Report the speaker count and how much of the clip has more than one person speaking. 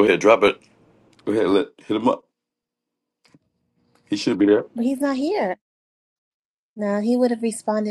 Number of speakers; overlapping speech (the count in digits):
2, no overlap